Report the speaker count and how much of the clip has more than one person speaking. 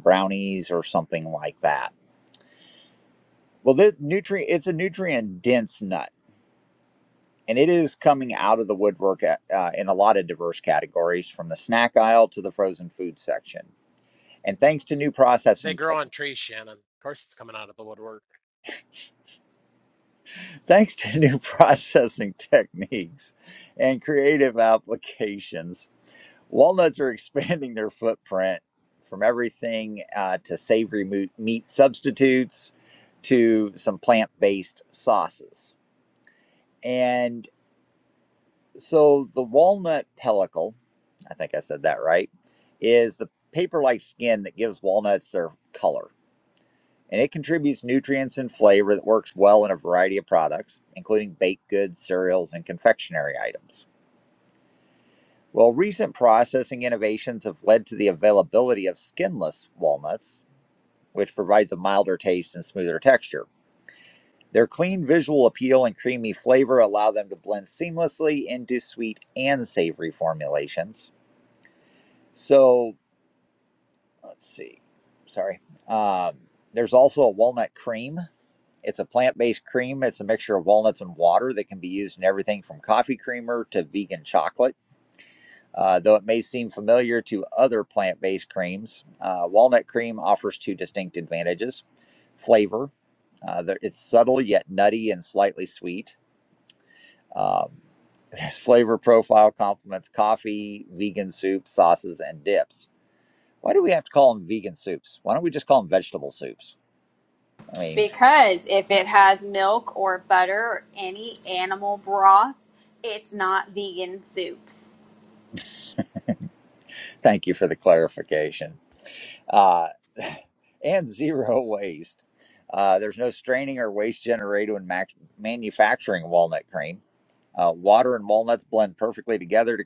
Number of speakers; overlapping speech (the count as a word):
three, under 1%